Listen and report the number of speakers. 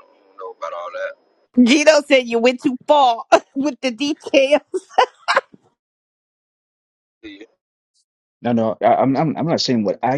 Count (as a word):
three